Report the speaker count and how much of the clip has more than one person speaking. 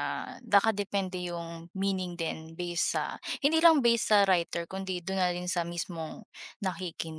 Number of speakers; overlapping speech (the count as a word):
one, no overlap